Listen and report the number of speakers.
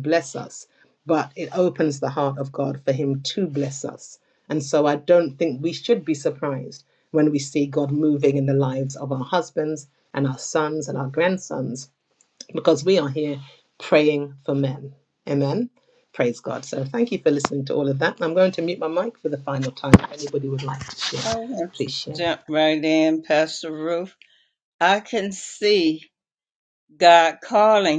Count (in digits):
2